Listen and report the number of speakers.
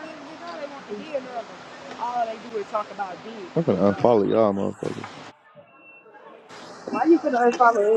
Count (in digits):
3